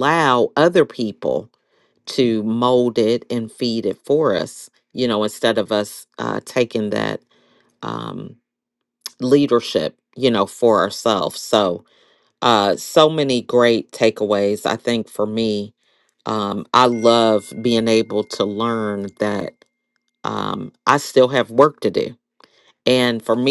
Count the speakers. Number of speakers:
1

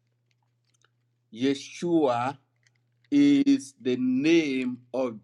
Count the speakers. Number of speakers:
1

